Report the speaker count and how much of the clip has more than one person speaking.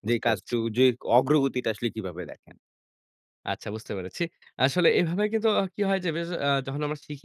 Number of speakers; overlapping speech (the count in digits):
2, about 7%